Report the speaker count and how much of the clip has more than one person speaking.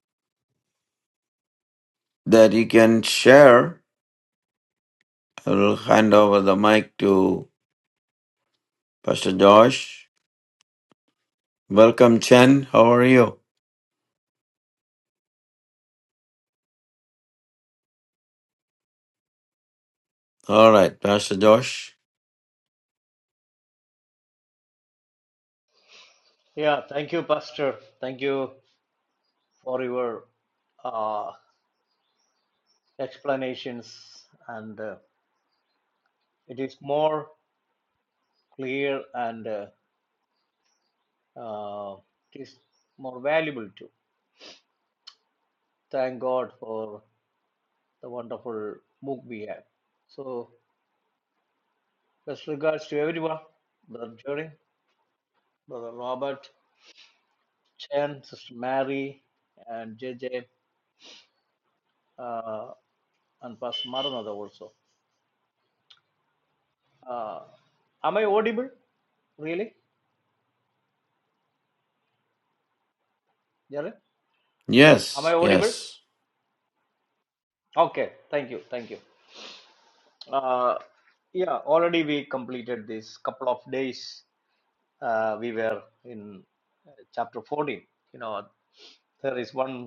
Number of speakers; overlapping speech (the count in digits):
2, under 1%